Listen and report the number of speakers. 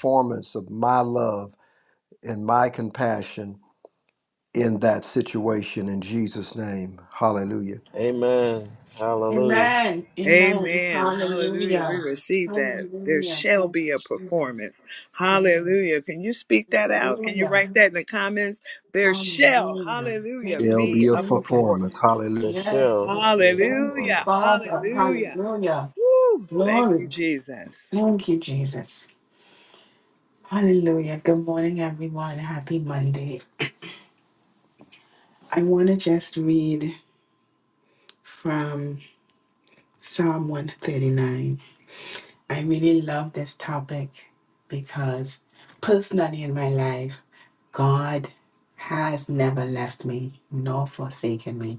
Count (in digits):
4